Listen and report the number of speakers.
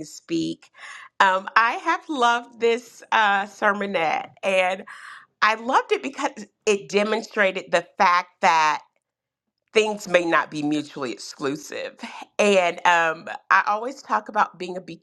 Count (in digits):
1